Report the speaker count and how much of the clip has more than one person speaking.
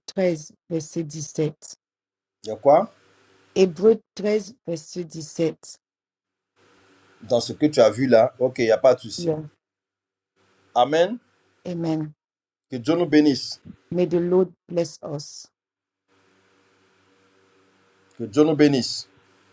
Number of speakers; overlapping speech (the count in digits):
2, about 1%